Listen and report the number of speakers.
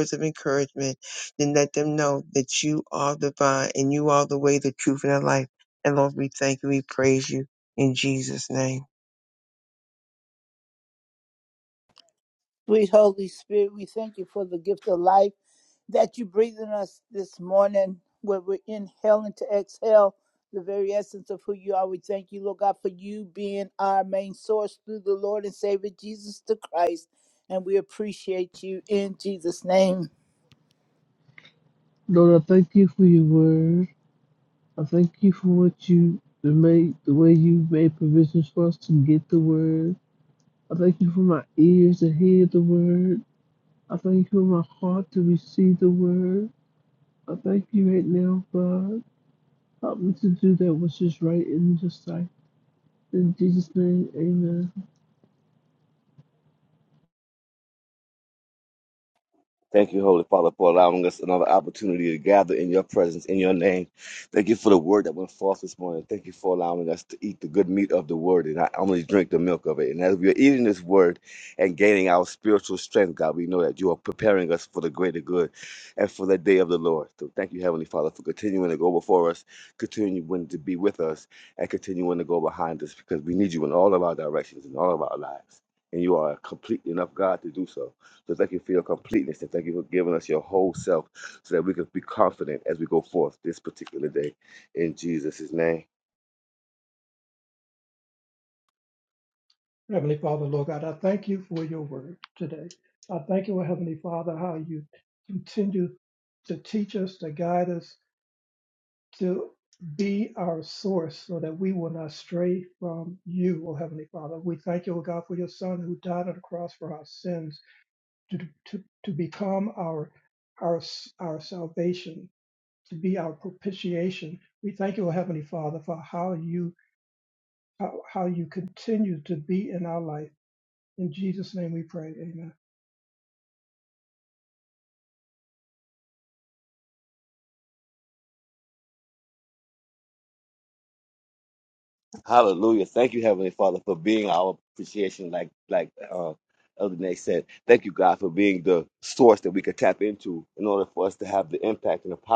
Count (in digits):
5